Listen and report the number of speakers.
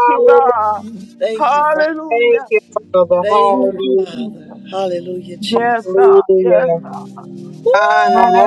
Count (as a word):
three